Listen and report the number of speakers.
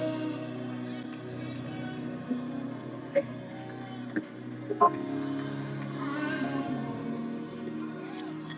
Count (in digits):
0